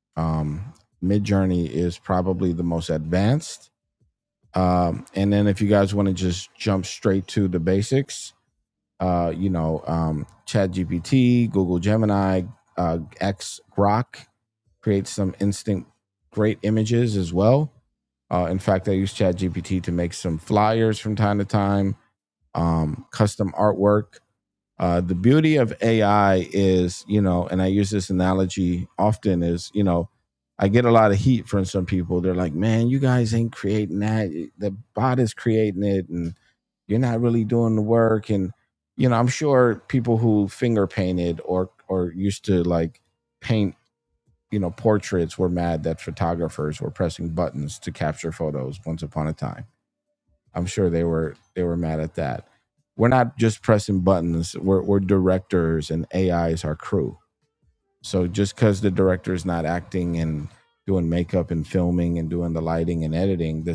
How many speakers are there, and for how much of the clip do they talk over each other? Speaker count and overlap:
one, no overlap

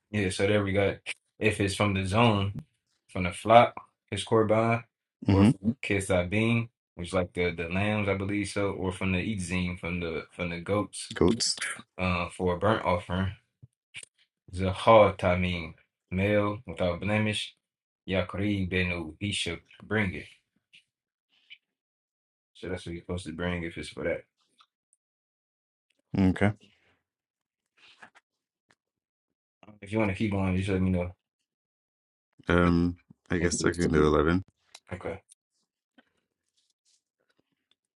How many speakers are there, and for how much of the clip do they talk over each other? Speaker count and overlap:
two, about 1%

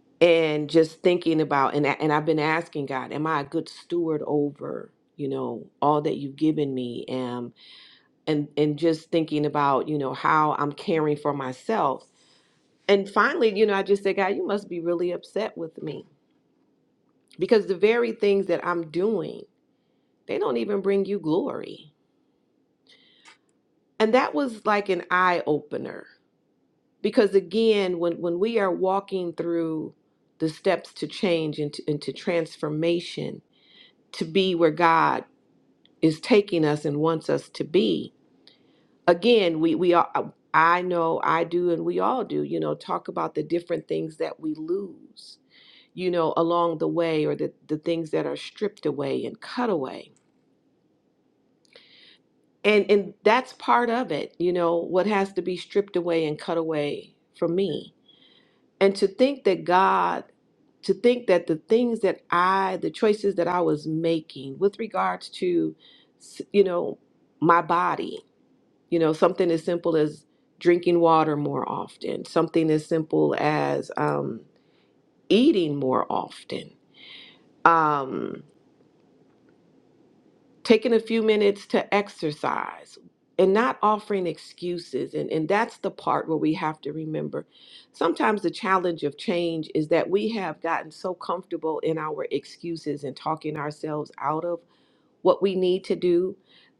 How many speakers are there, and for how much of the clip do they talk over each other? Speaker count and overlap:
one, no overlap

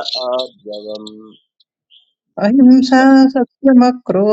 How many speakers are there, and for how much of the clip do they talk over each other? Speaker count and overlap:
two, about 8%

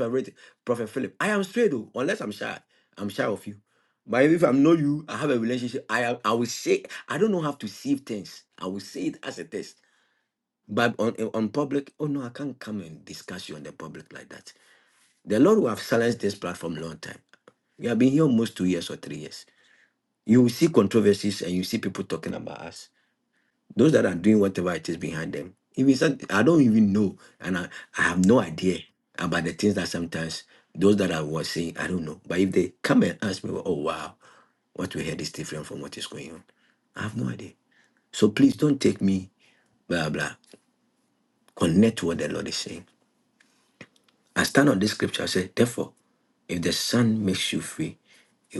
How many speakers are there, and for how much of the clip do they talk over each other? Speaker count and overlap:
one, no overlap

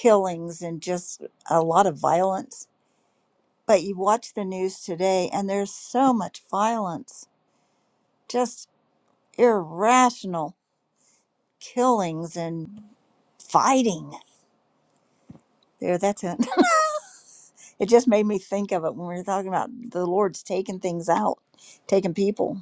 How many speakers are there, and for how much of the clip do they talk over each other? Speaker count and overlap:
one, no overlap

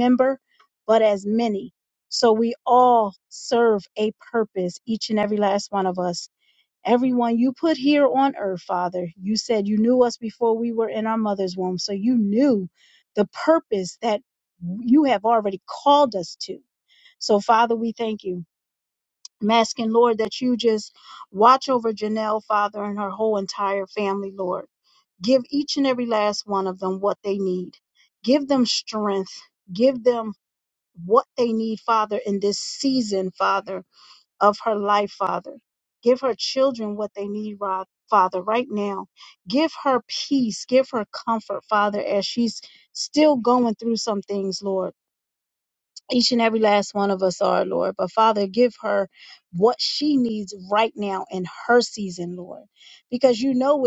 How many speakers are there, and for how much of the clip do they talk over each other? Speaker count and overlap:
one, no overlap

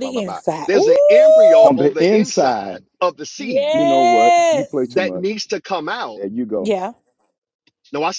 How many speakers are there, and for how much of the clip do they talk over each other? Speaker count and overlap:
three, about 43%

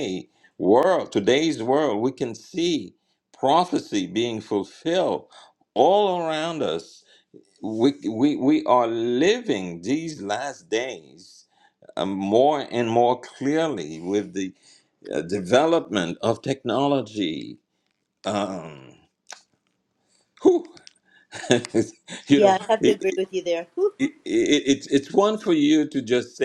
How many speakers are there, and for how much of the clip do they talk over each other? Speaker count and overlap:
two, about 3%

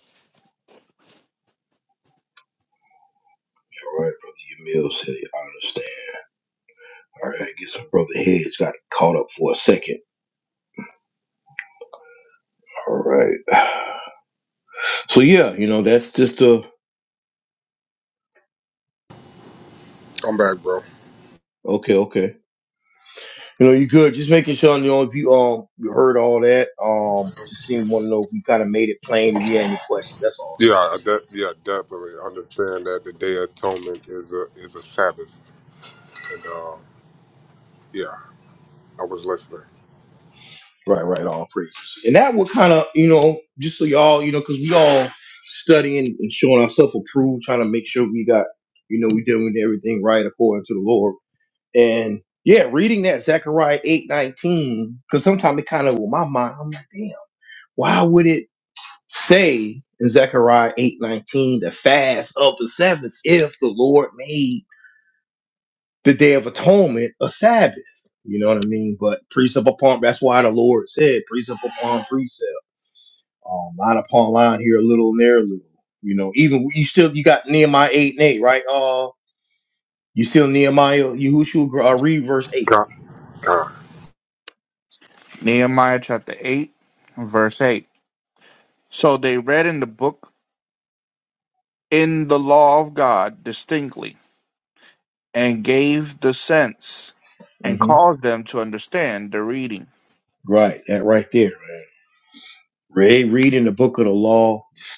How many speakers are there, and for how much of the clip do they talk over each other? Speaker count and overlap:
three, under 1%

